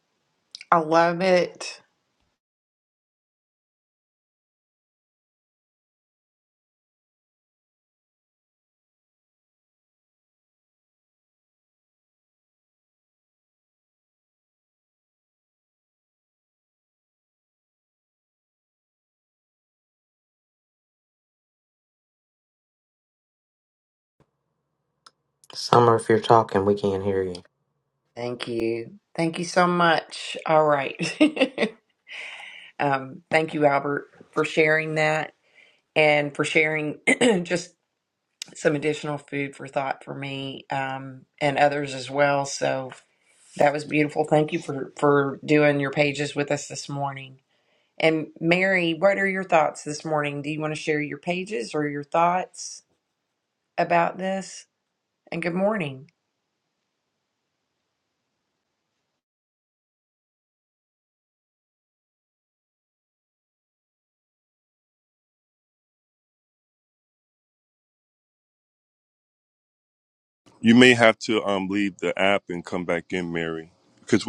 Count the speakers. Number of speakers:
three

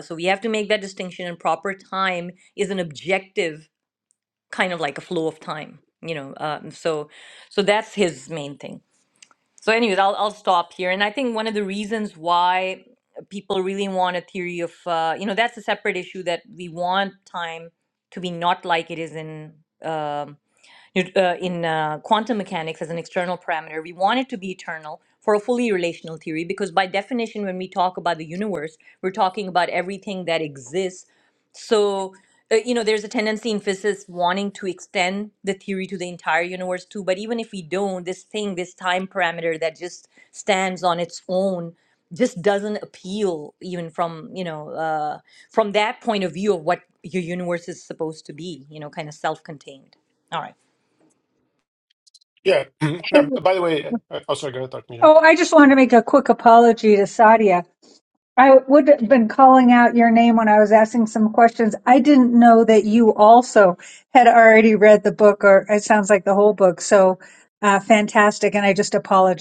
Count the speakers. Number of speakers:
three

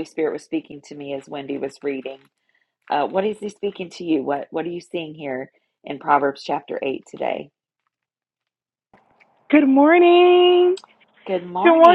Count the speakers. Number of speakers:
two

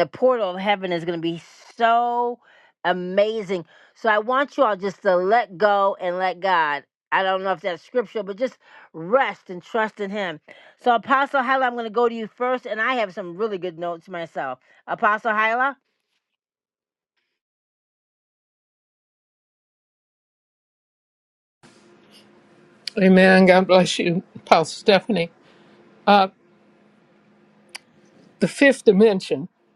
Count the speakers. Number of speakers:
two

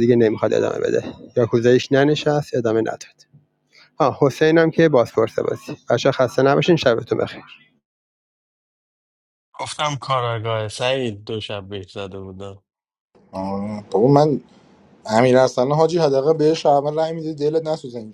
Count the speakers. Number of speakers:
three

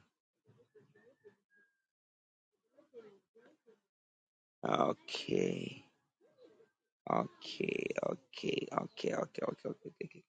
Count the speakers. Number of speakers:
one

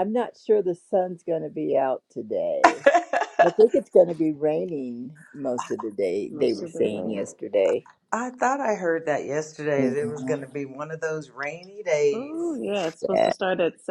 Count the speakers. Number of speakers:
three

